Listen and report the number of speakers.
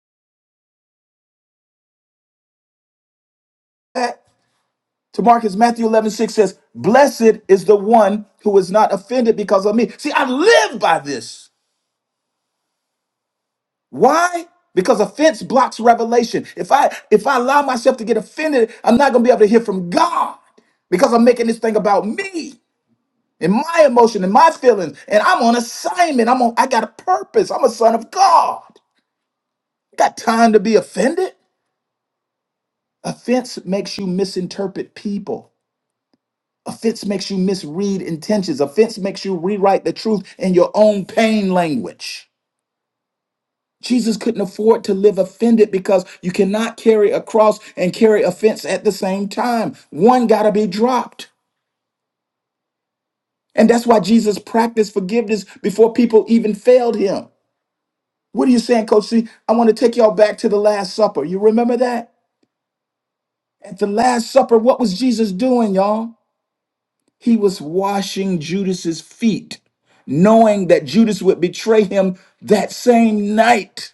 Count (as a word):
one